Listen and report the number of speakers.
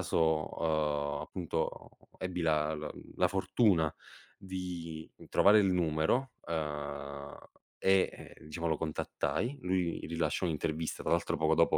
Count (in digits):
1